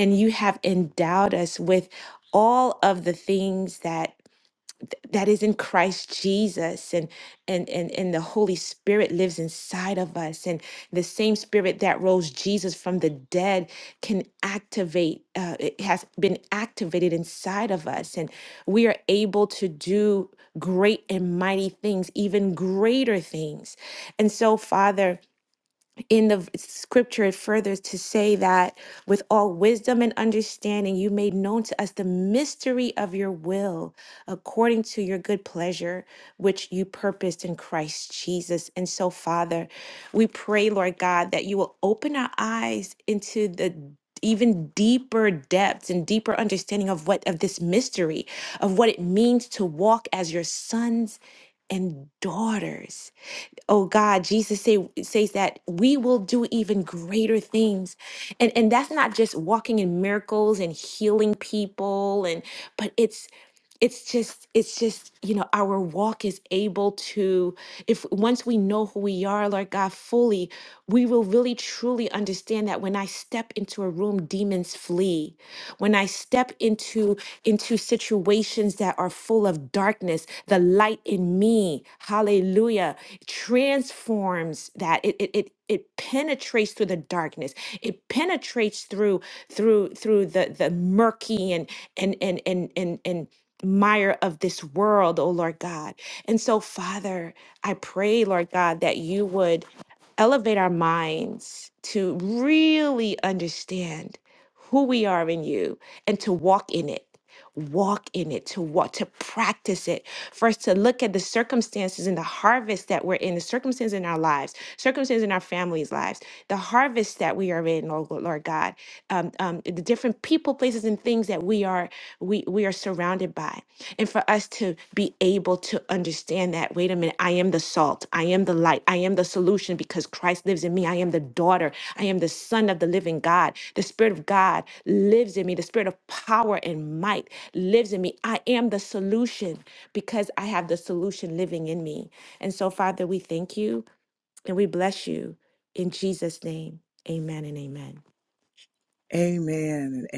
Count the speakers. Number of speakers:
2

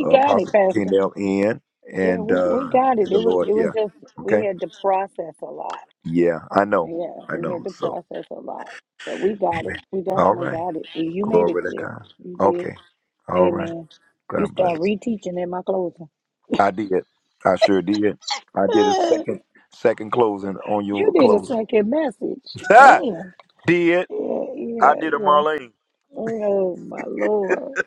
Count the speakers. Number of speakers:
2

